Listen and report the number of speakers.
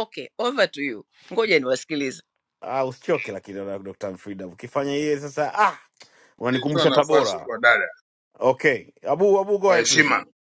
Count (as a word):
three